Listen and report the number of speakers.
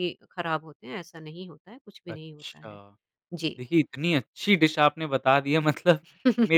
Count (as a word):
two